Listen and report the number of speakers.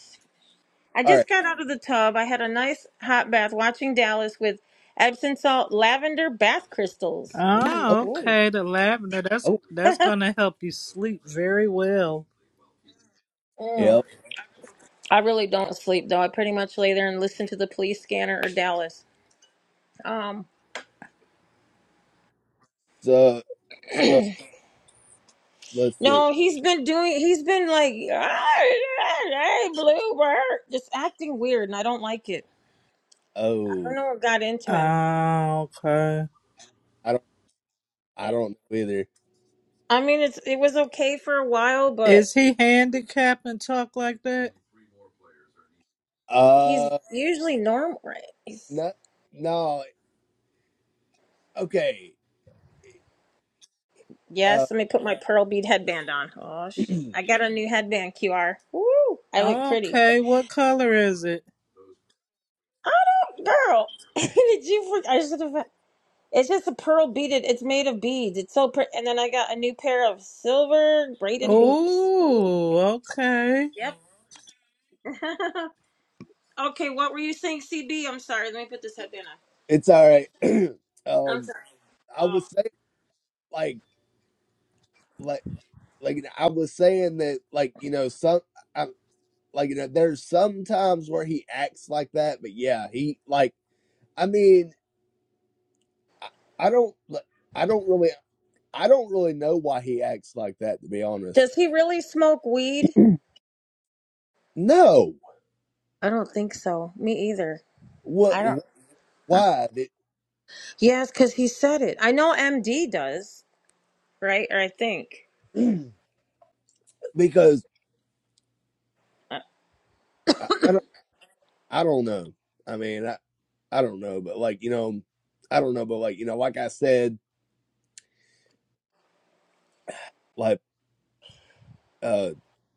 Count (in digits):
3